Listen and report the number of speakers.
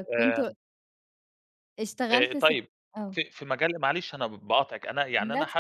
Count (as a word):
two